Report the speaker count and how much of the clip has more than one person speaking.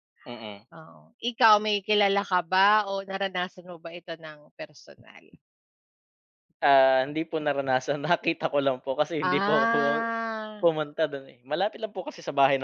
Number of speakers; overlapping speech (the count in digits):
2, about 7%